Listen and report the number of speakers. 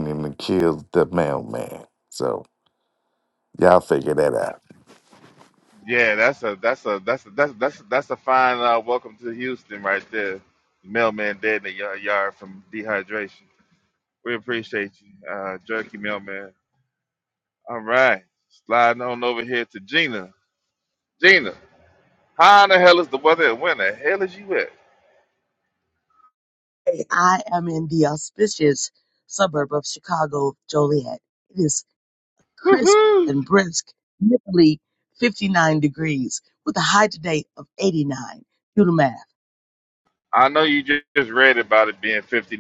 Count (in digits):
3